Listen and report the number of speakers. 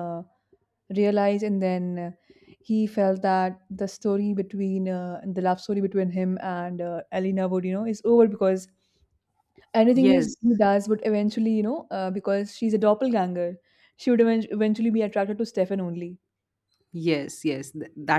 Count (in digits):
2